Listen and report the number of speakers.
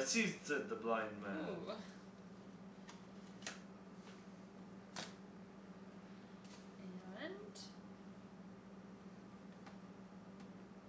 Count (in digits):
2